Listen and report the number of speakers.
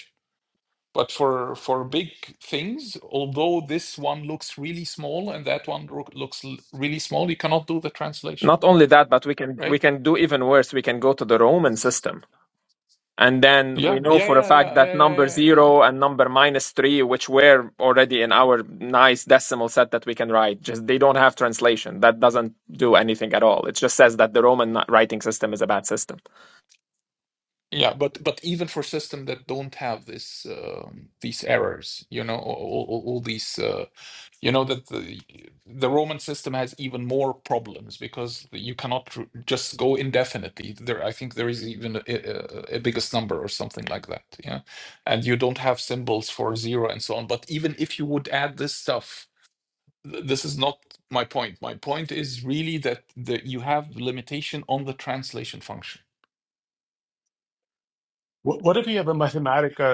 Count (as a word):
three